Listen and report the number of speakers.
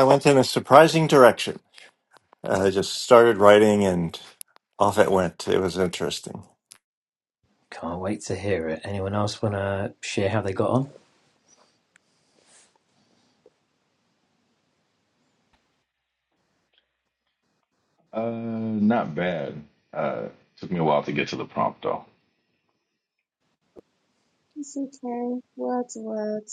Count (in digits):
4